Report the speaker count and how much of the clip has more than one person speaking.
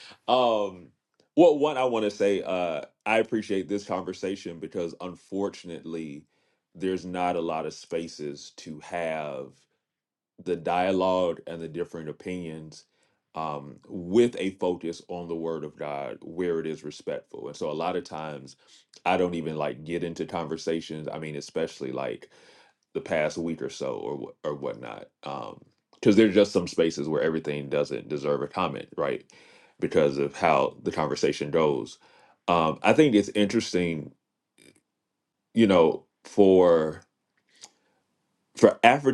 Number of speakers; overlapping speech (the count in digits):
1, no overlap